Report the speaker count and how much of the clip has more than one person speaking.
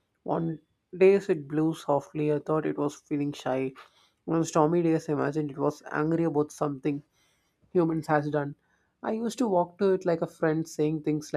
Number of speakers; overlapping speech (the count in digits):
1, no overlap